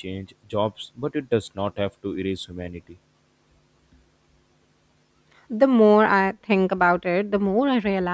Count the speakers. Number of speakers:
2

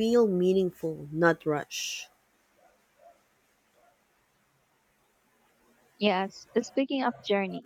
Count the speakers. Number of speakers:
2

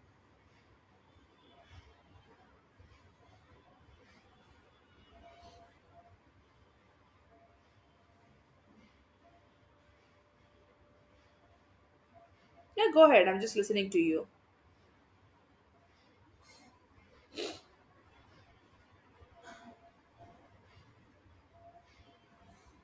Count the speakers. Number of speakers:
1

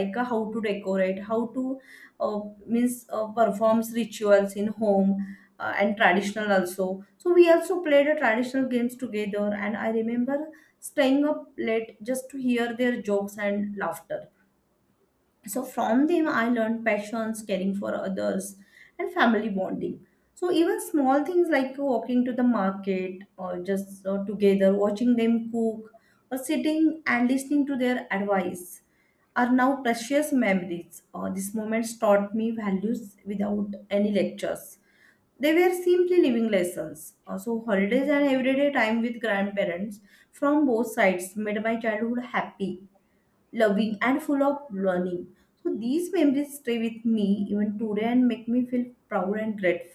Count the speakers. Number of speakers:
1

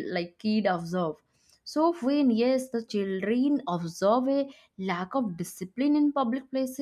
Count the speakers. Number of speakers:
1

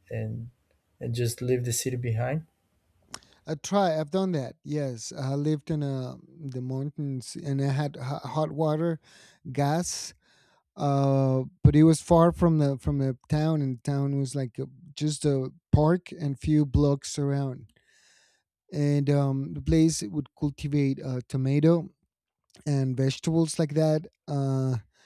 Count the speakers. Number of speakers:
2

